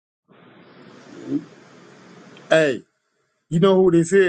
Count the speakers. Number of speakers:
one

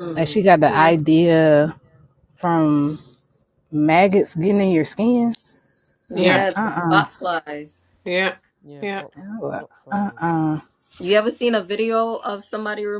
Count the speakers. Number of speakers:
three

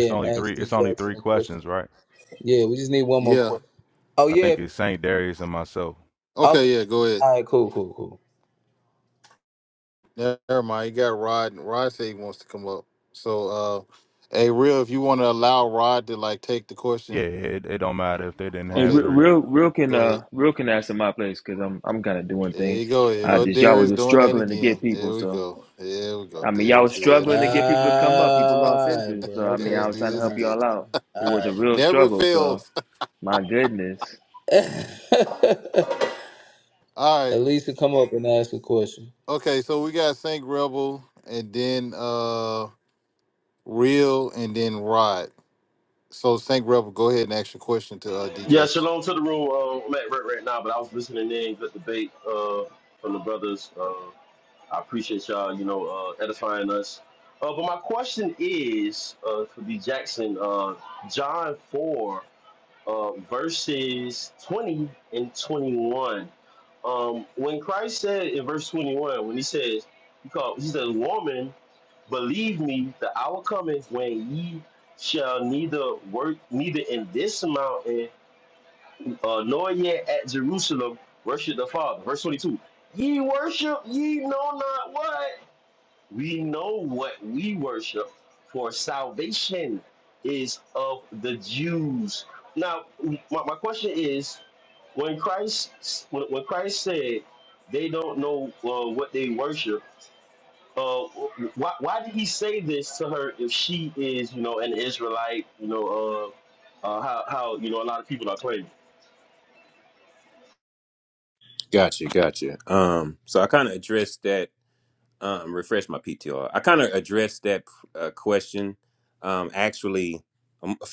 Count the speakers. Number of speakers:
six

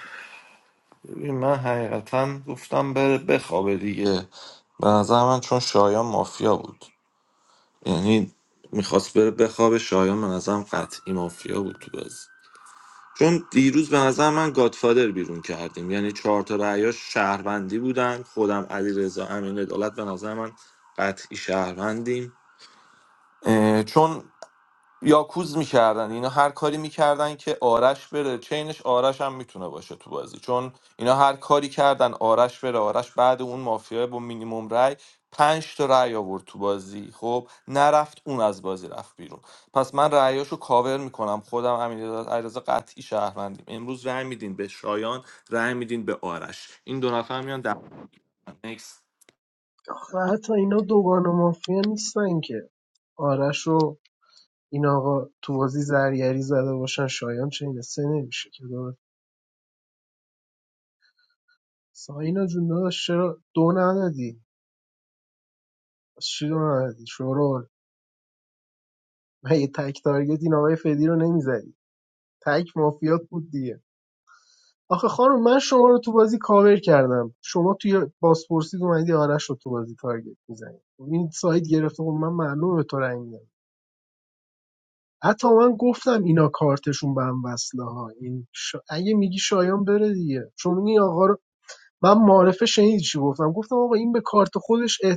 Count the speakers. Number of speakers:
two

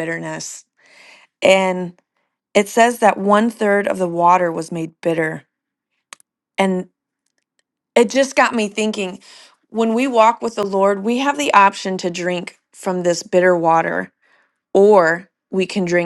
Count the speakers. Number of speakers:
one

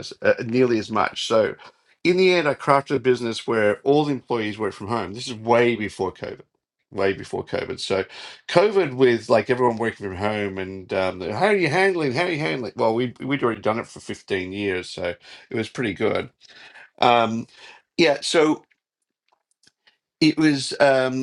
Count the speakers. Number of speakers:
one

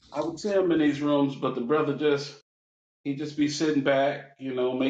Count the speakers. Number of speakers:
one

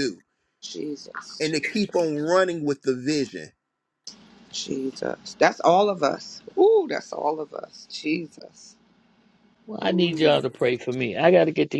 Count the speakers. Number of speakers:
three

